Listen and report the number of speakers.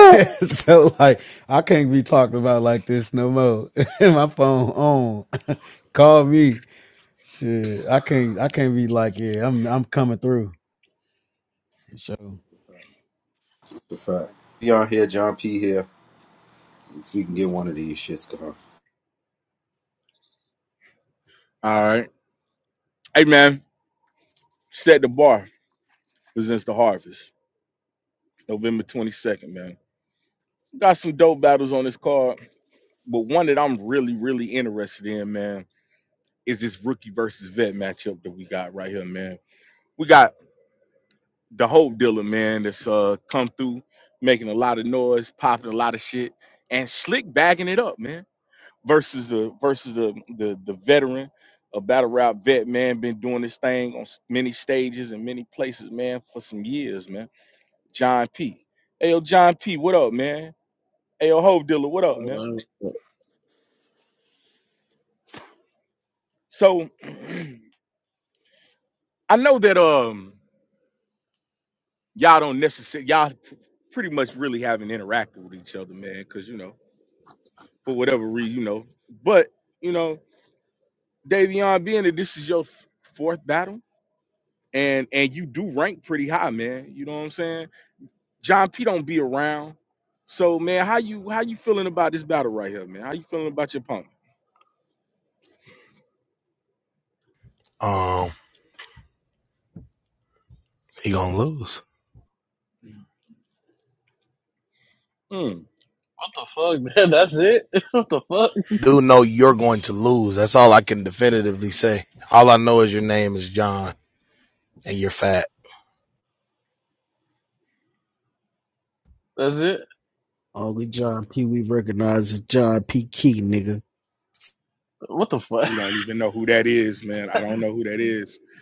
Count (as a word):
six